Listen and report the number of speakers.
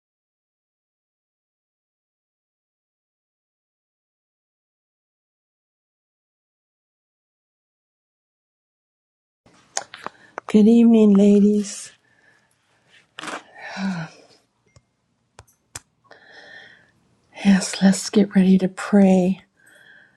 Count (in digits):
1